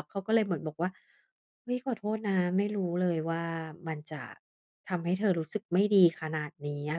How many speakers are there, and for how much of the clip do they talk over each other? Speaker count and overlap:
1, no overlap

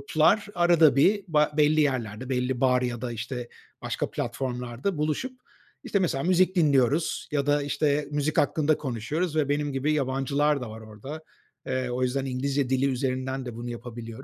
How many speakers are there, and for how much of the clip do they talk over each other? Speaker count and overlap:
1, no overlap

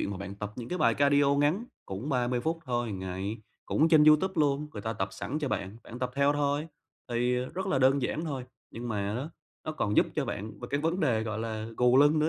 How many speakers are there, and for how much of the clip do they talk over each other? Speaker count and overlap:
1, no overlap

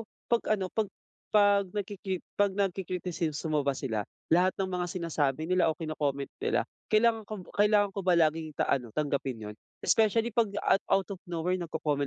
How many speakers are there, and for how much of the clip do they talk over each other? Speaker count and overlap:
1, no overlap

